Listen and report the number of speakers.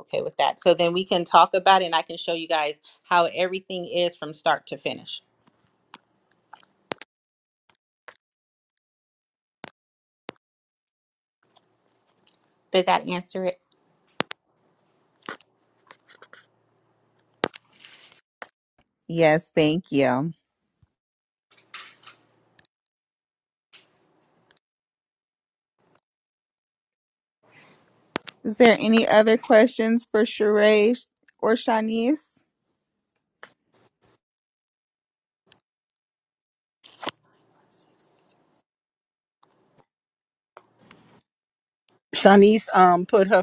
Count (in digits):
3